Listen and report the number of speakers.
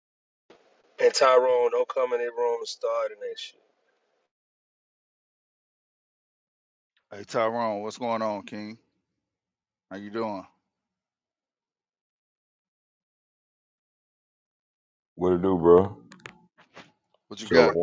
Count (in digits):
3